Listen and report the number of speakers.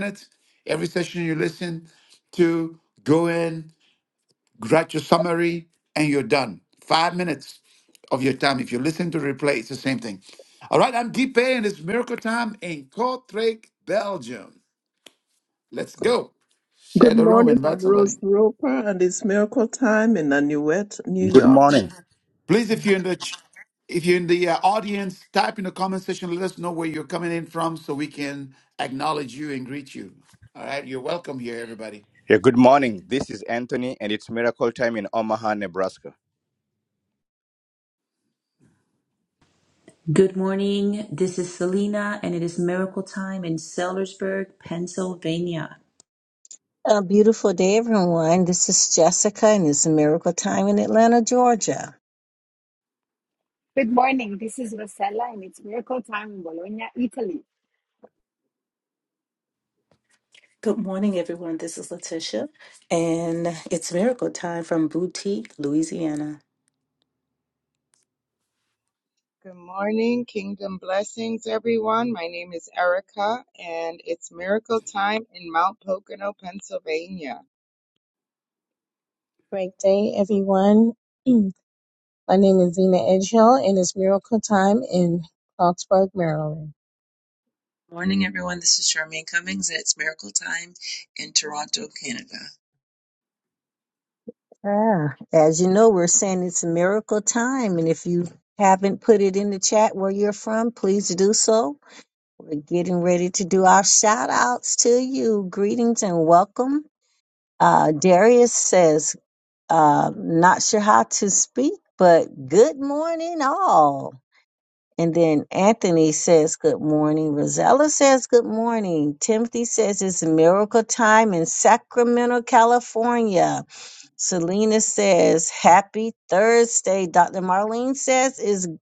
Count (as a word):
ten